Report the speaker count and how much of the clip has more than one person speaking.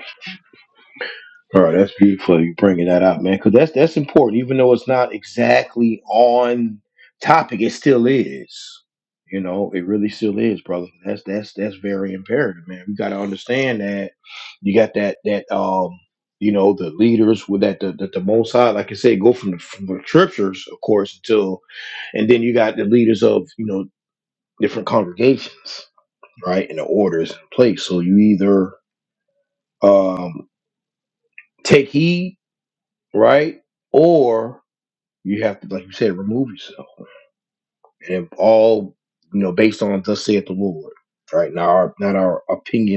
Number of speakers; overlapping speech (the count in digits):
1, no overlap